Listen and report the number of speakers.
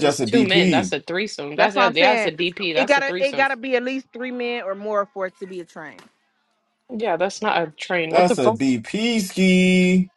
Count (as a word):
three